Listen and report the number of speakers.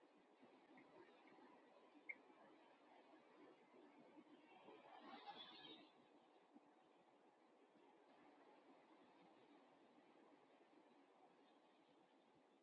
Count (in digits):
0